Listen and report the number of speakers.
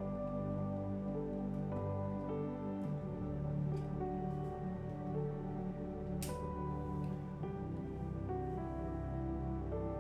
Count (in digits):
0